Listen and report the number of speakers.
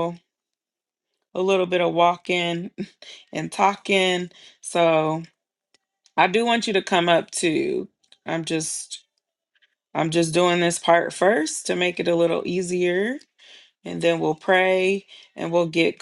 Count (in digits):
1